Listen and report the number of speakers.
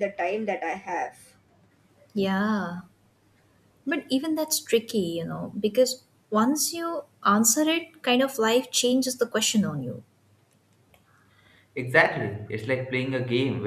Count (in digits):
3